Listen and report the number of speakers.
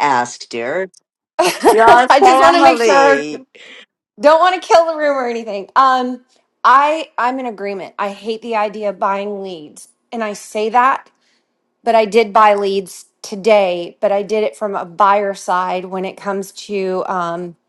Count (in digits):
2